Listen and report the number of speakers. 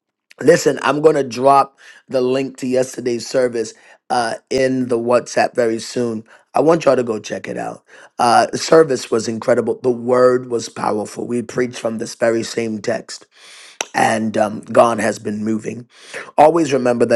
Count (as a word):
one